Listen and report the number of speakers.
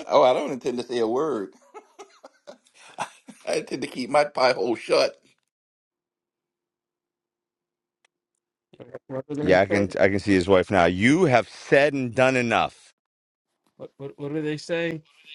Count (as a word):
three